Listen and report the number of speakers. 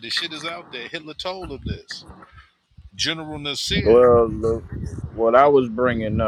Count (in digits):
2